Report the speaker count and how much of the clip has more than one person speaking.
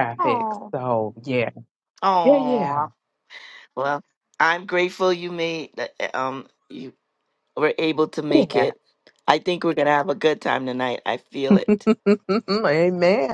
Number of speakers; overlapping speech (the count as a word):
two, about 11%